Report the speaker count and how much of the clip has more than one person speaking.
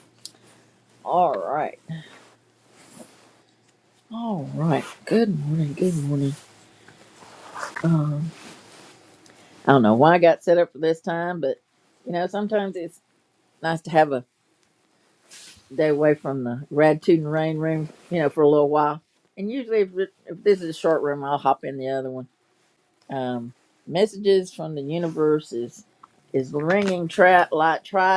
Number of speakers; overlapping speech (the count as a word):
one, no overlap